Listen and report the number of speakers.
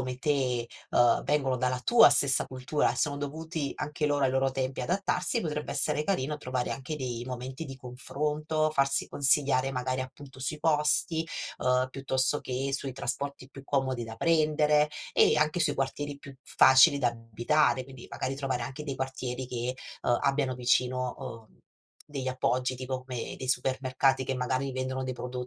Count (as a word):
one